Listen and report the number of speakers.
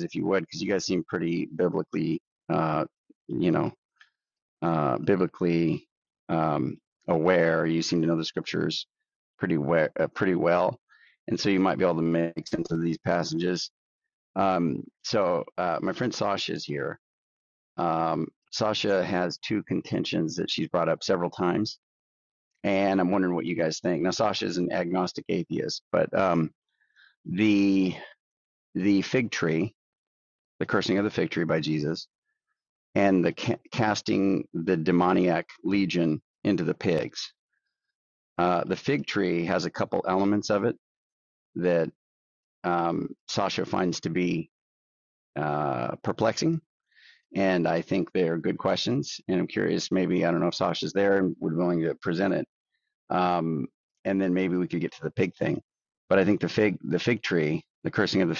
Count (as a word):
one